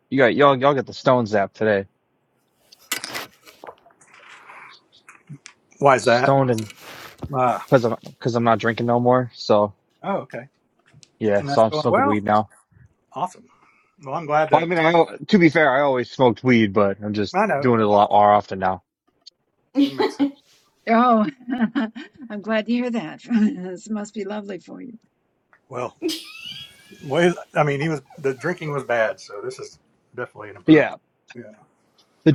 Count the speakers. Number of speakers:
three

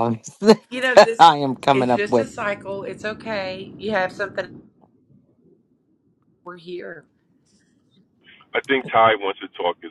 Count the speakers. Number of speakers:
three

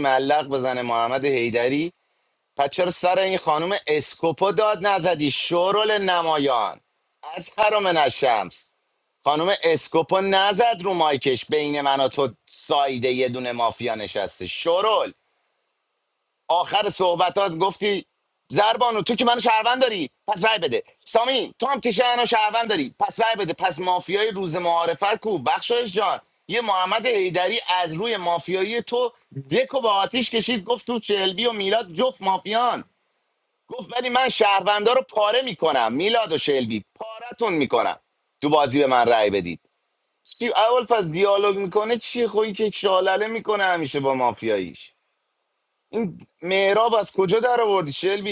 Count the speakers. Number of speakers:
one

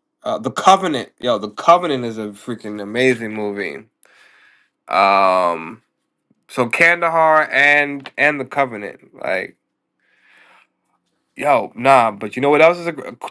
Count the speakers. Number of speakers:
one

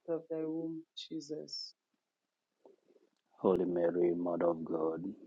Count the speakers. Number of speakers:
two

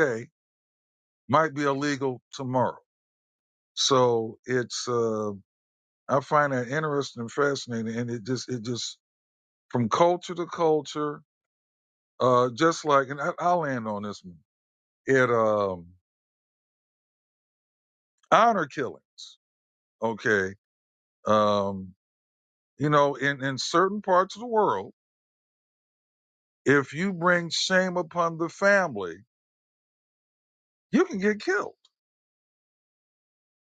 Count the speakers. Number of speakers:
one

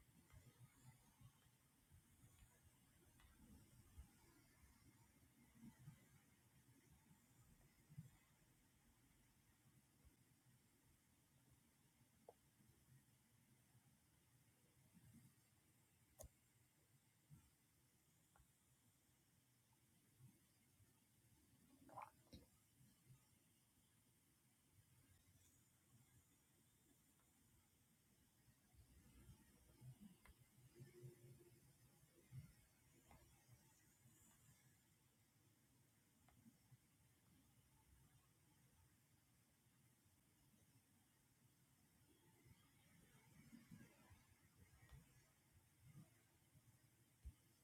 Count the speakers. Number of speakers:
zero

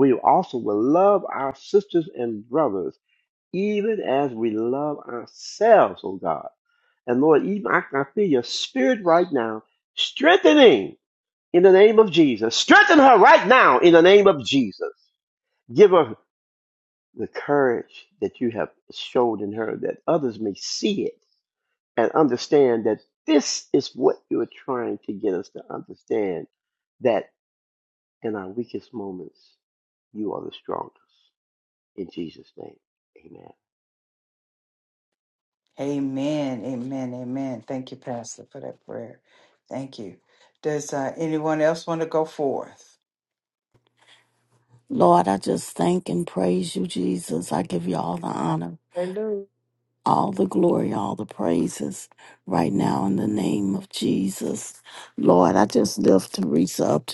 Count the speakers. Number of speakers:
three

